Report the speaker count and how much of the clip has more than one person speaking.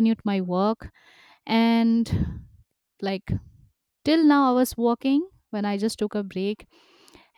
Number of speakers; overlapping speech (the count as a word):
one, no overlap